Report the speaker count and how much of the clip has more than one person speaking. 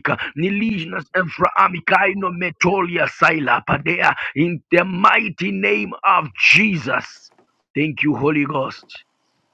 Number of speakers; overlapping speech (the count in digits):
1, no overlap